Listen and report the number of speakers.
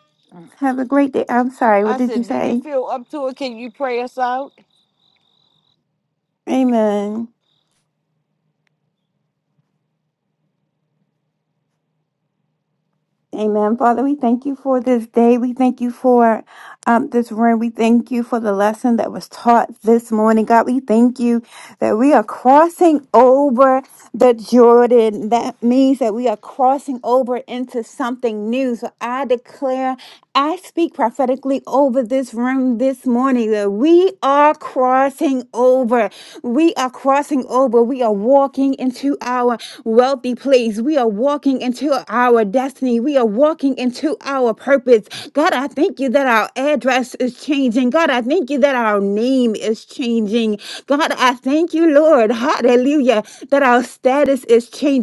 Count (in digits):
2